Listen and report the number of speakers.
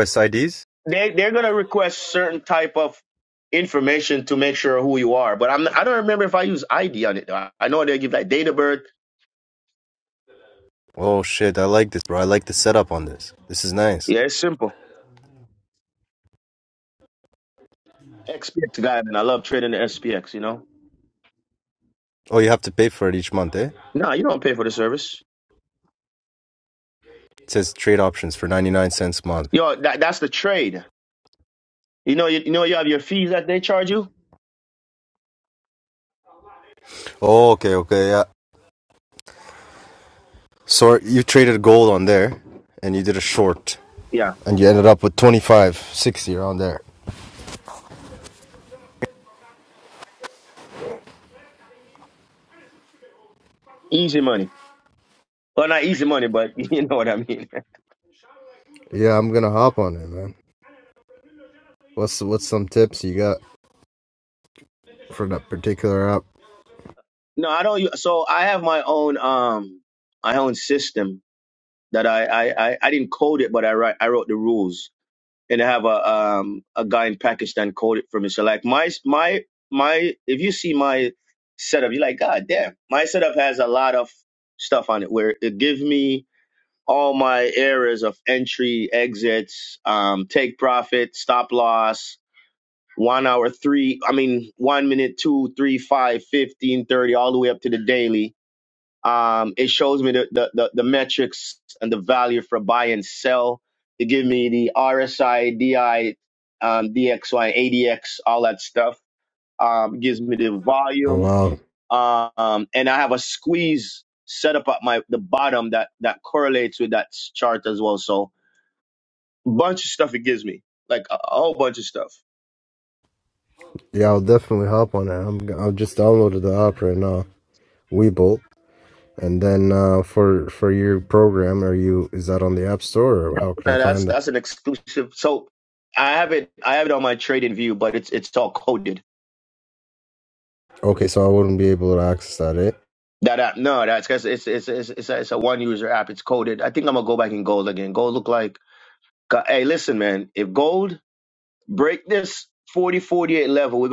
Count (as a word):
two